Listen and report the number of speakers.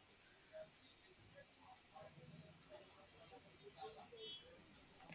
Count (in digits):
0